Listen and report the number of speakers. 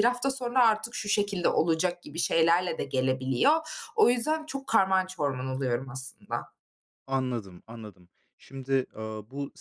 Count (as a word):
two